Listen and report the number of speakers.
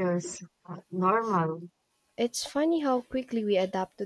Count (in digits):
2